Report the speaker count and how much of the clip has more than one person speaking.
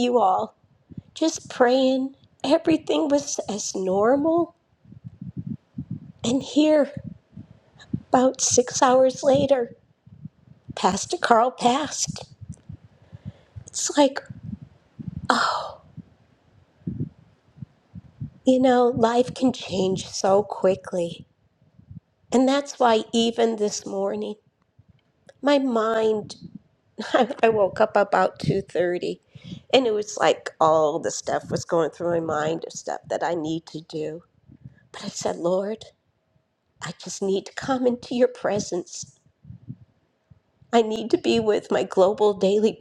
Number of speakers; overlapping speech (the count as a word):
one, no overlap